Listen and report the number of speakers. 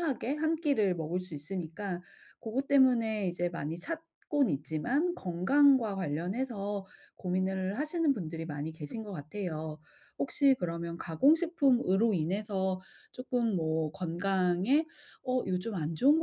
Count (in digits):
1